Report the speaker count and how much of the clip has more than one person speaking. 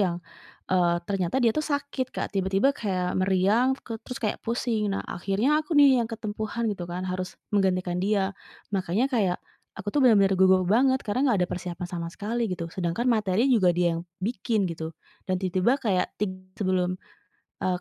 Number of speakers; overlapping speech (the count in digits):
1, no overlap